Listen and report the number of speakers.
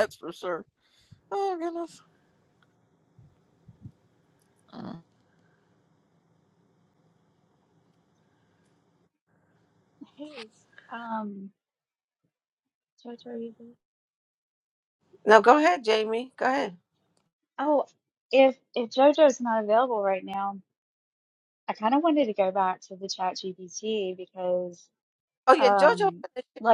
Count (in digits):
3